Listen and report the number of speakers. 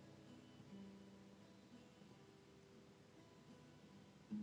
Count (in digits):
0